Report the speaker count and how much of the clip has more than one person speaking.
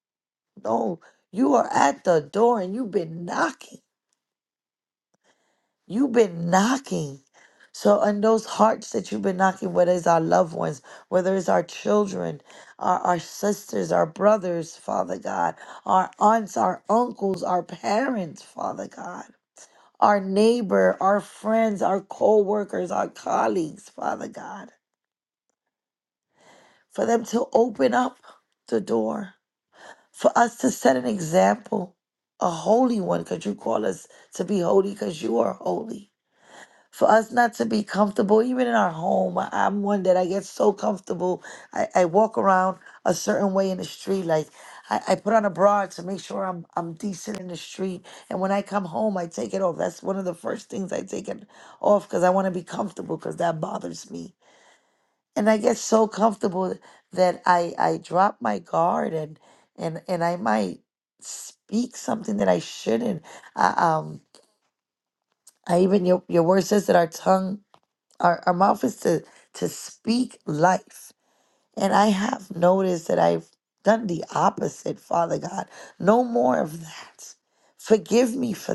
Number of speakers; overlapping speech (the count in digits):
1, no overlap